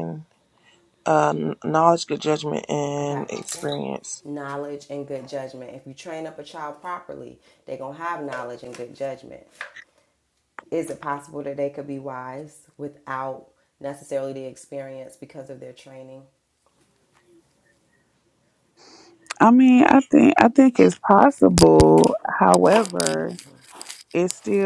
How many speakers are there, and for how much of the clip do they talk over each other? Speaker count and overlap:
three, about 1%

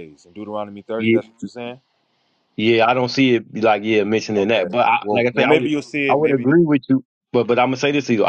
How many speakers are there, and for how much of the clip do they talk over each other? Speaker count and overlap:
two, about 22%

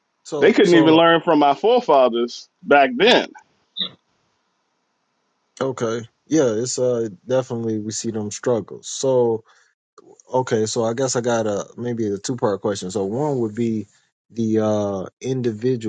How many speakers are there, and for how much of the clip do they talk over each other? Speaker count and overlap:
two, about 4%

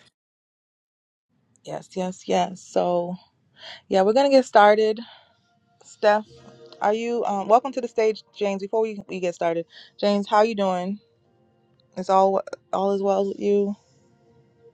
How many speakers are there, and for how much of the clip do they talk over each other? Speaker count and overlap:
one, no overlap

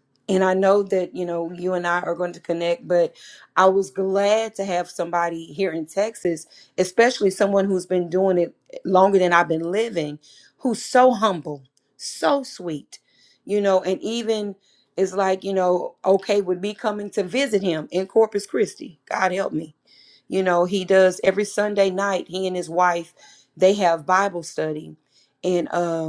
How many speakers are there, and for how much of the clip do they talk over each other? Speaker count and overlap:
one, no overlap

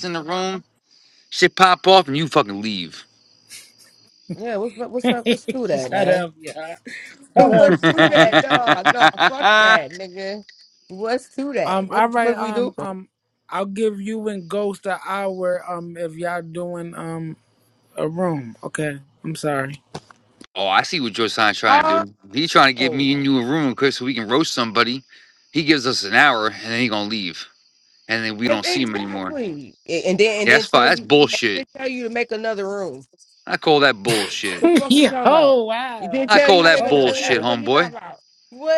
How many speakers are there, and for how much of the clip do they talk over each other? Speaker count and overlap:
three, about 20%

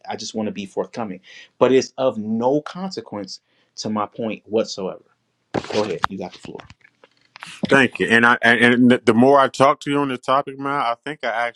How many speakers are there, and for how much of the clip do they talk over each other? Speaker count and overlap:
two, no overlap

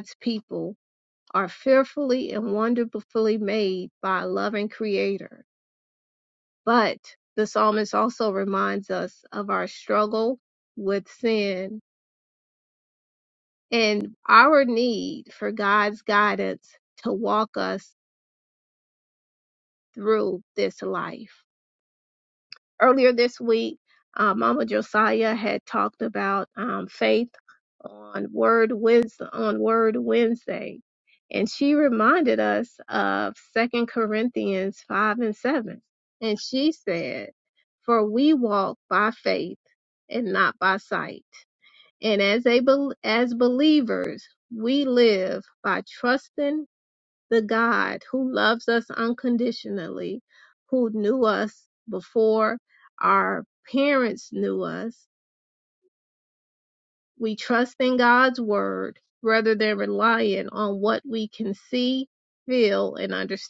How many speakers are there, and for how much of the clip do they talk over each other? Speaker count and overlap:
one, no overlap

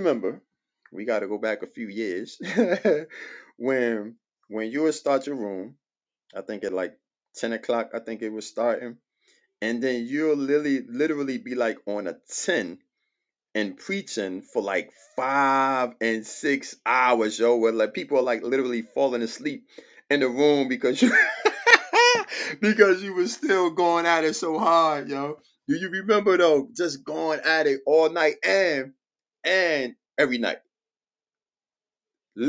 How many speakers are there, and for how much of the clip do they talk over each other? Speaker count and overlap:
one, no overlap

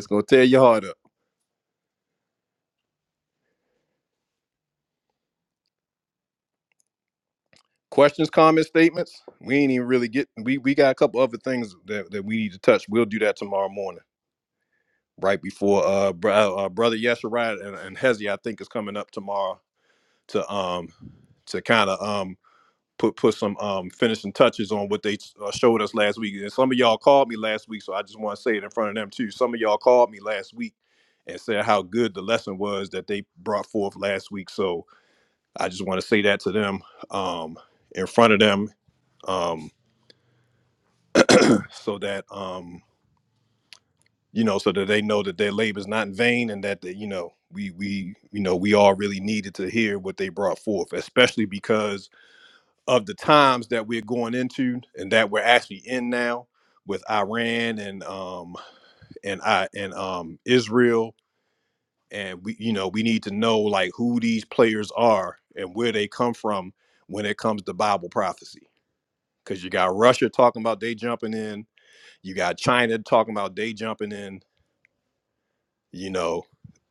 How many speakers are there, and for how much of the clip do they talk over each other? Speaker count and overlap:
one, no overlap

